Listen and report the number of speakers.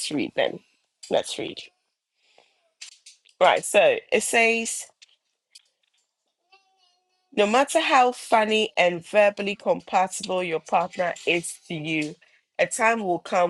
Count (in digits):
1